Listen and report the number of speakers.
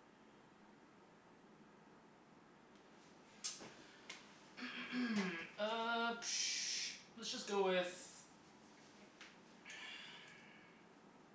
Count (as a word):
one